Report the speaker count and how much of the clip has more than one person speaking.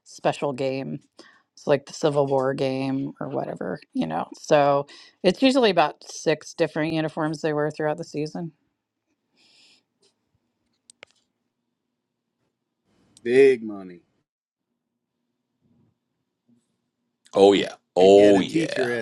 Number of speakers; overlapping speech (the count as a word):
three, about 5%